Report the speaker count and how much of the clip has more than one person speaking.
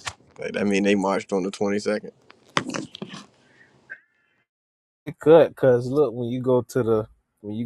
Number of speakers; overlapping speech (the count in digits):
2, no overlap